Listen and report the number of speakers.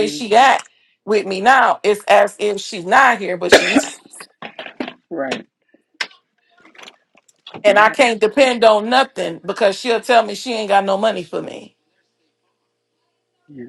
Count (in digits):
2